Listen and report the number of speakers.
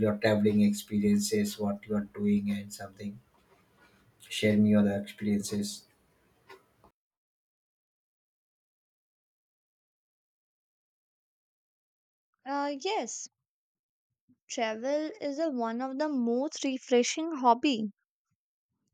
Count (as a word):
two